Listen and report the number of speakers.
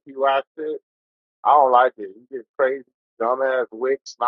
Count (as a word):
one